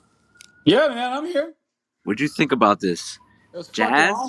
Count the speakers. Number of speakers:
2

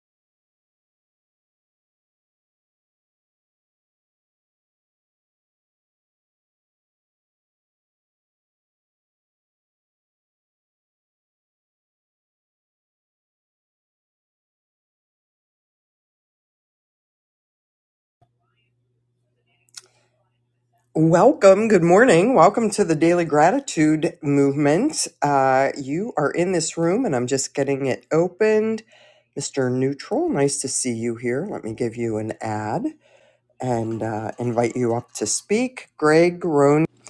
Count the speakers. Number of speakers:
1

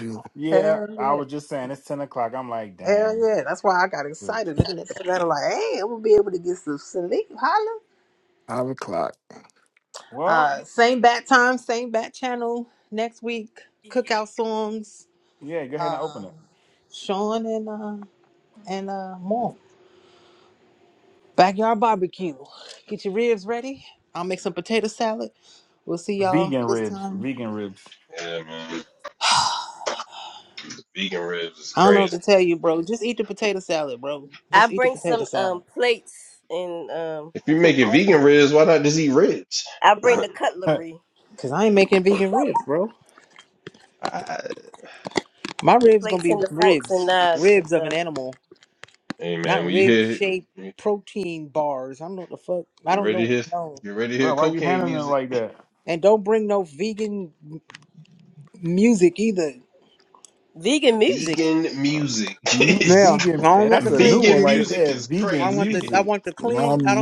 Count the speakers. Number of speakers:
5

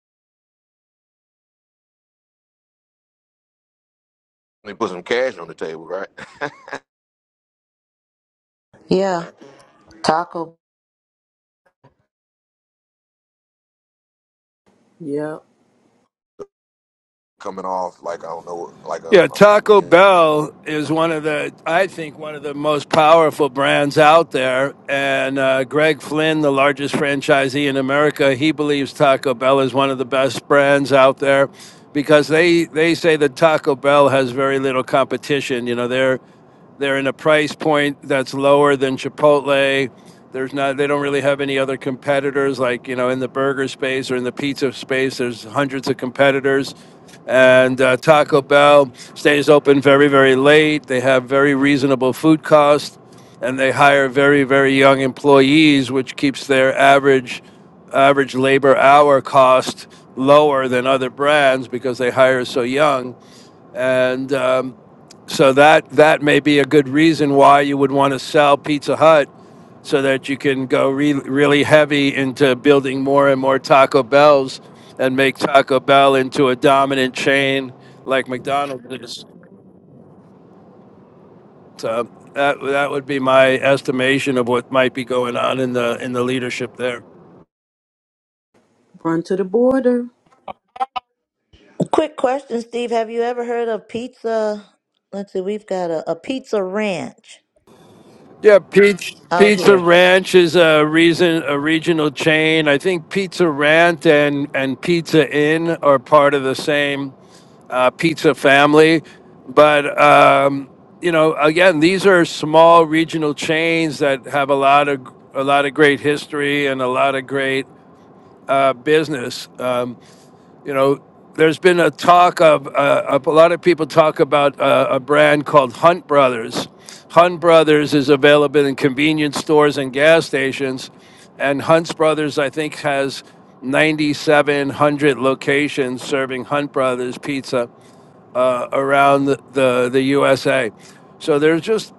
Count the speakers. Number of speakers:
4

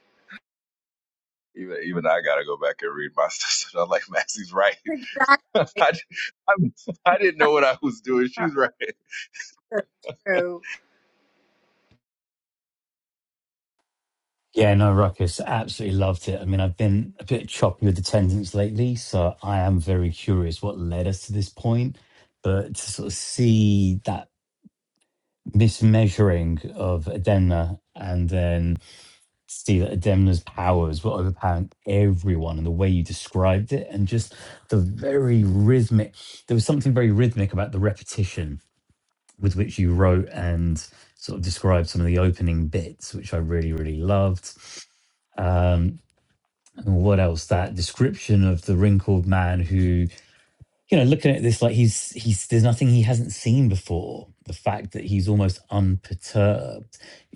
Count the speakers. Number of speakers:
3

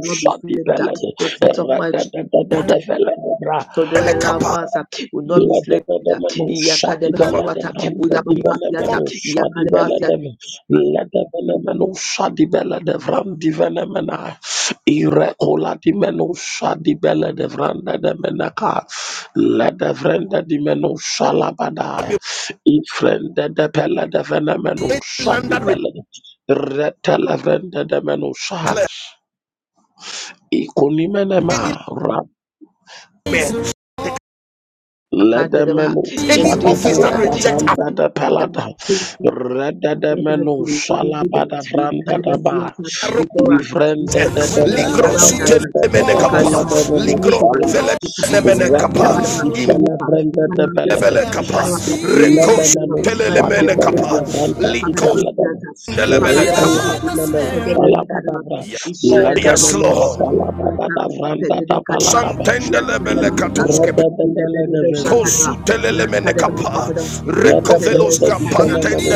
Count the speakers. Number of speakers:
3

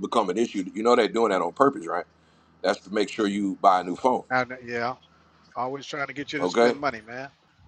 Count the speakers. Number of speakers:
2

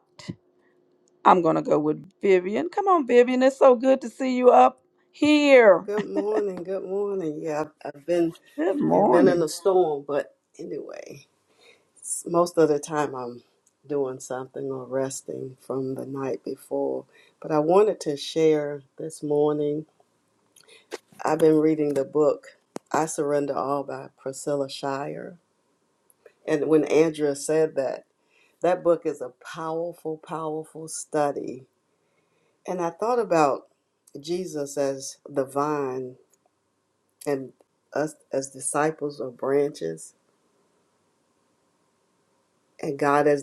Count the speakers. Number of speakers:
2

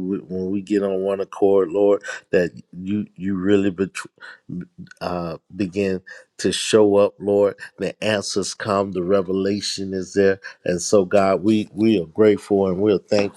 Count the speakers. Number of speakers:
1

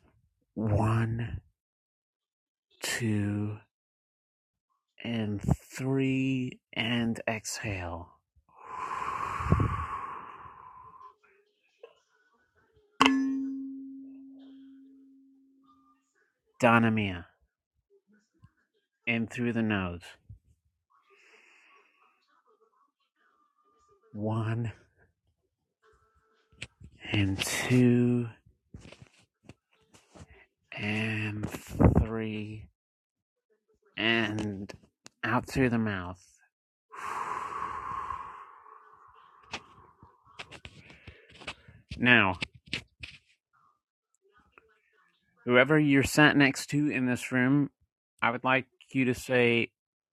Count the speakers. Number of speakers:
1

